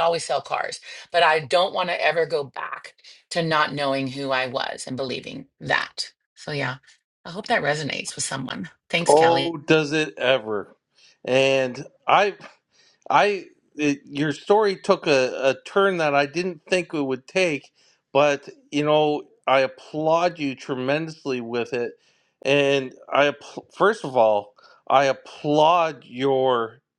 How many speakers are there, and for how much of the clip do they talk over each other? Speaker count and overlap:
2, about 2%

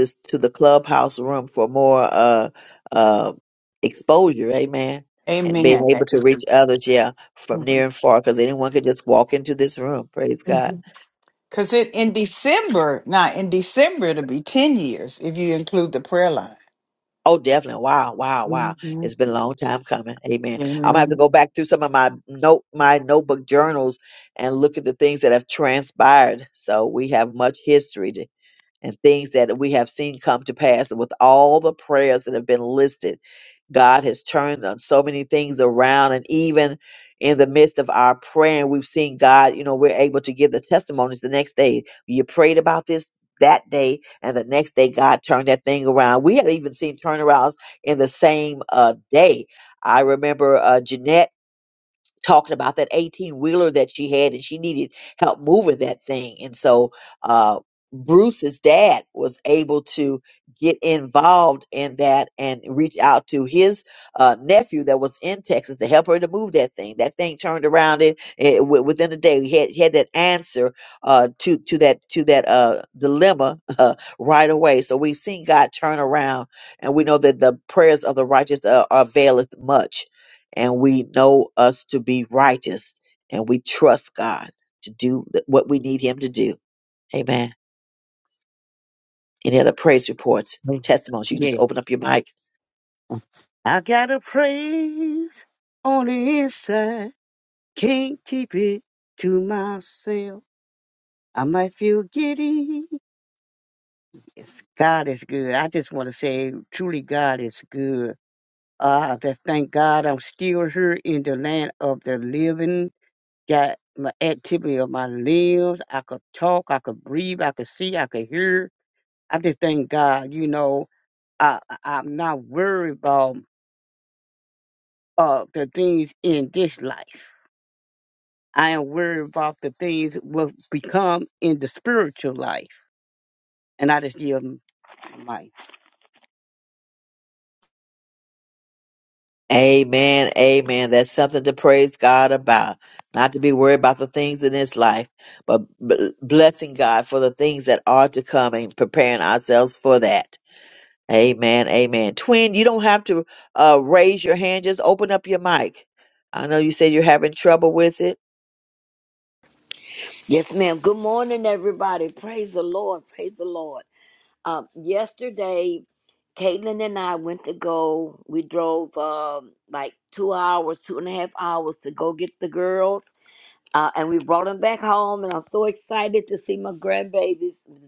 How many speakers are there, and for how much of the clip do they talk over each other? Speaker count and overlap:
4, about 1%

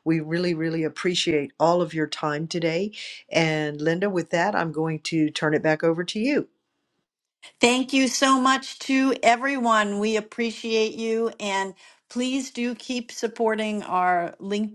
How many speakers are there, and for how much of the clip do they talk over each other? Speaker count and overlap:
2, no overlap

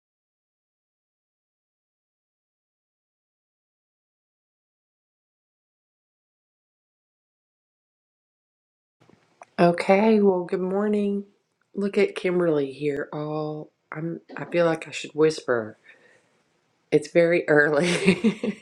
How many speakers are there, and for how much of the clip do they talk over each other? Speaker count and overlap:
1, no overlap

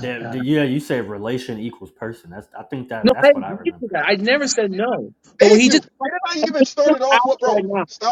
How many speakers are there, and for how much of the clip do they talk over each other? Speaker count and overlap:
3, about 34%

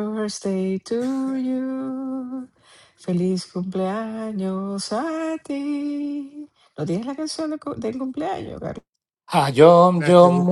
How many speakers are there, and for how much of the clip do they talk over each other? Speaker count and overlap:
2, no overlap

